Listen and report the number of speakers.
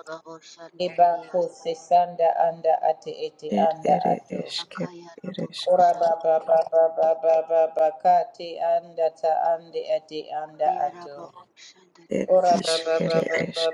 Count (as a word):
three